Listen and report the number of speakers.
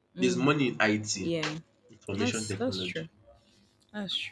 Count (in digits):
2